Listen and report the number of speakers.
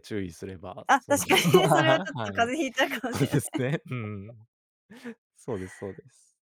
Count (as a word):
two